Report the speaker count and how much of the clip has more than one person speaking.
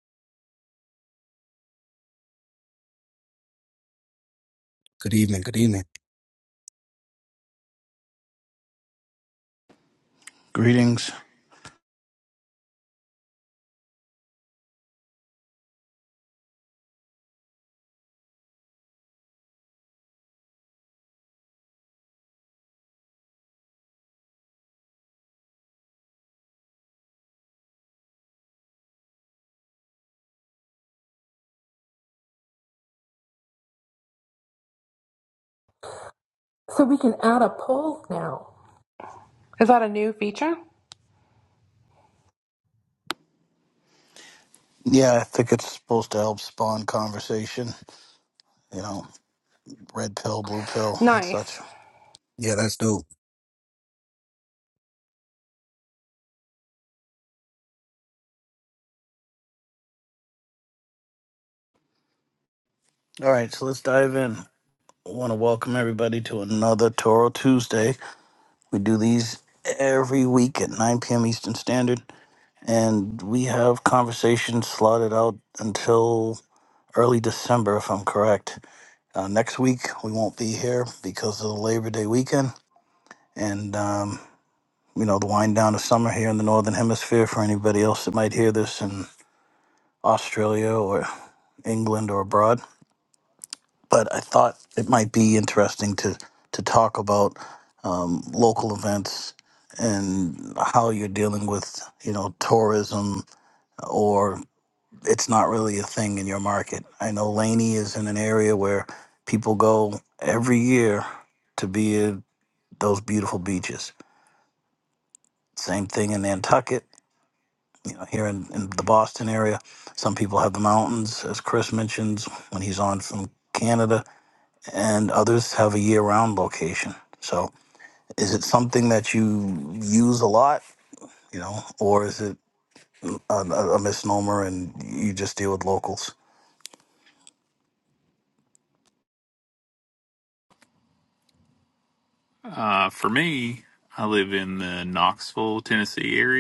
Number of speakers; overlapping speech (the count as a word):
four, under 1%